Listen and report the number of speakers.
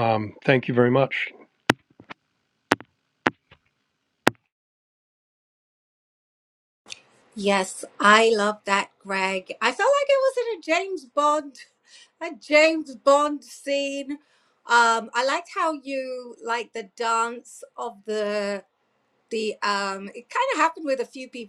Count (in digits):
2